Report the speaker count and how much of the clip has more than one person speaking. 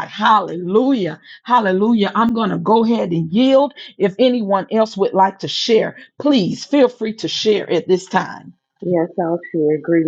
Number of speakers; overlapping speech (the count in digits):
2, no overlap